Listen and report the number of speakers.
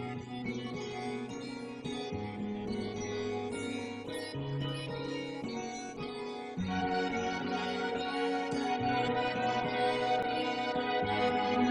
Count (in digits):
0